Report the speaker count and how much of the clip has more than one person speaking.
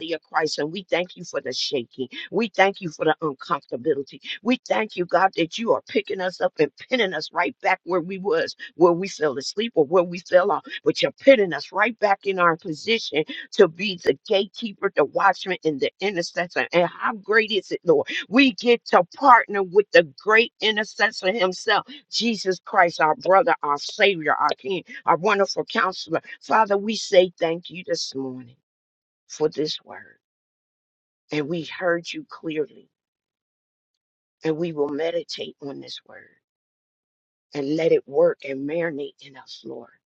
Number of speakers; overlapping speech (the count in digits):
1, no overlap